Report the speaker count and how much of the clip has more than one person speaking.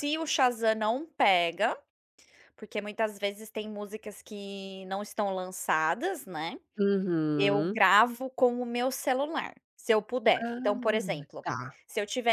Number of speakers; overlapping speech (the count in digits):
2, about 9%